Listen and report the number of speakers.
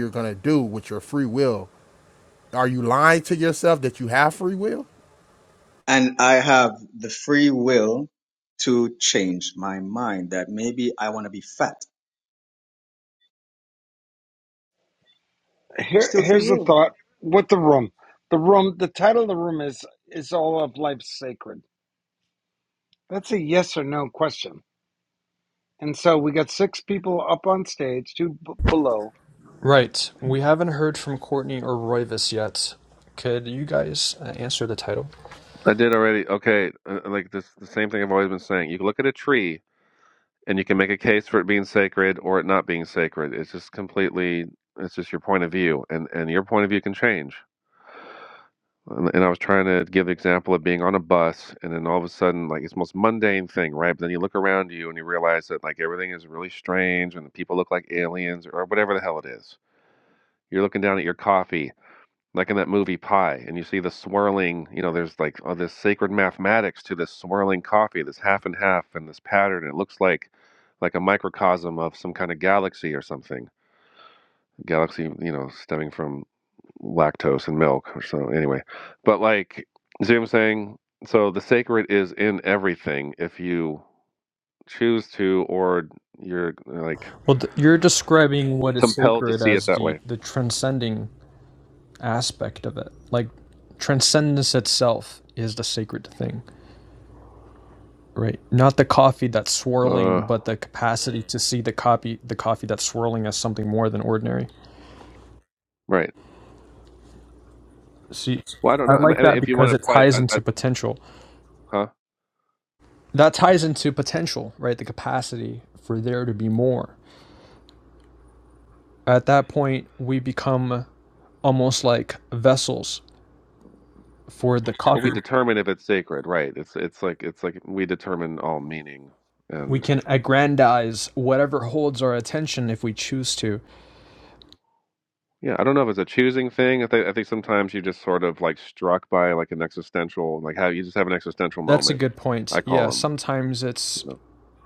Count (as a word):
five